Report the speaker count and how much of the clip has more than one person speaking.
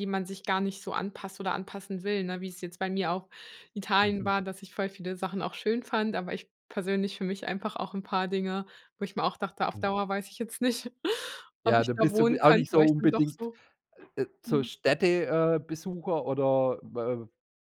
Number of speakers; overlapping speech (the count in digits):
2, about 13%